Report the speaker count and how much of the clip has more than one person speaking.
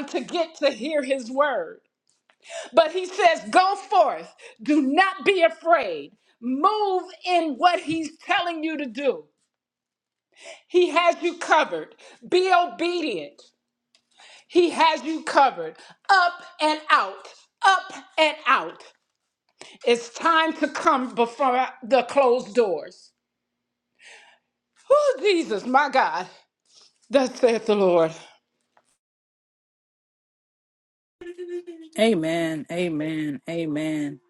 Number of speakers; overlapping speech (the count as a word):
two, no overlap